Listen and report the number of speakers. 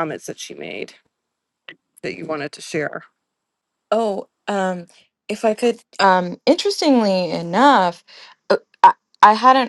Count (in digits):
2